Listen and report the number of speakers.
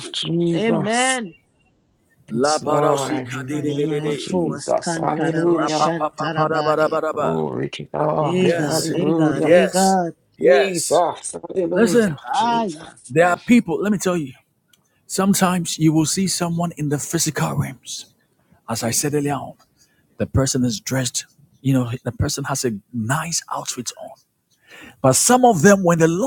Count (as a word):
three